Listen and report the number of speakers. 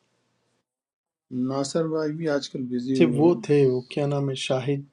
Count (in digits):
2